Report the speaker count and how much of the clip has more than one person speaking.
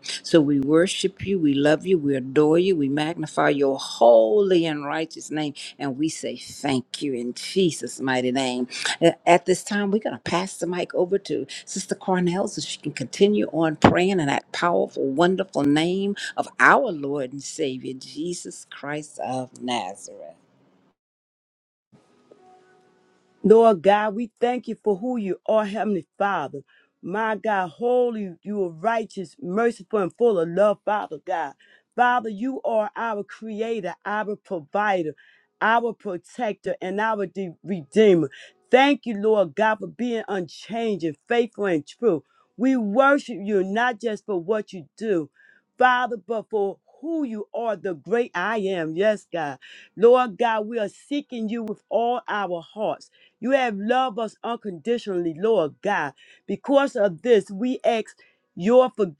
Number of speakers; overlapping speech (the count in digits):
2, no overlap